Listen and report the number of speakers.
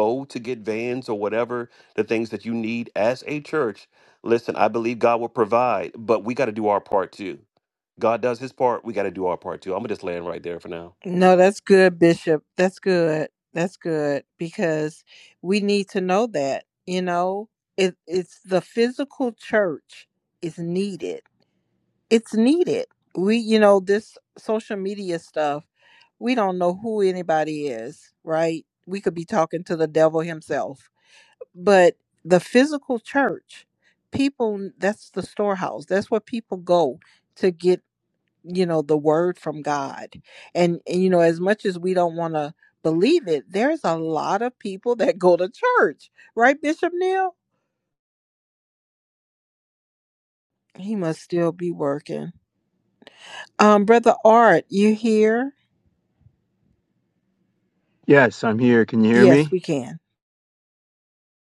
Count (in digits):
3